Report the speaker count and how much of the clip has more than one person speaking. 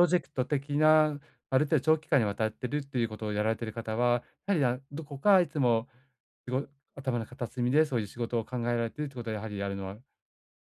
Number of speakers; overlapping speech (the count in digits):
1, no overlap